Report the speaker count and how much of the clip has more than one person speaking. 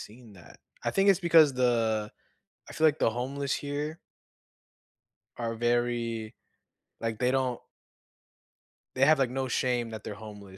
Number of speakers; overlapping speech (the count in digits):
1, no overlap